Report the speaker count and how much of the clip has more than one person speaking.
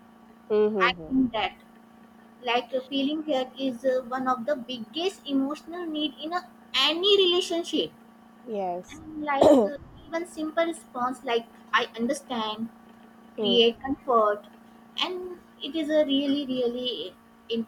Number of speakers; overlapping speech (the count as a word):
two, about 3%